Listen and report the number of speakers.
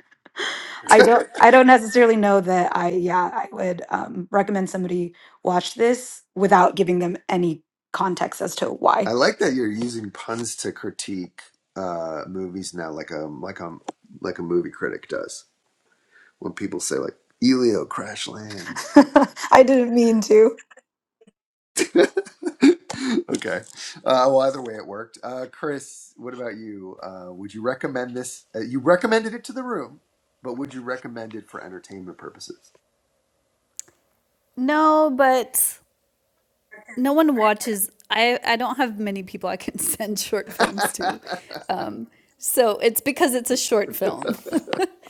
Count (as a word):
three